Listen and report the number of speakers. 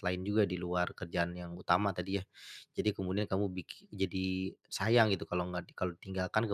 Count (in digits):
1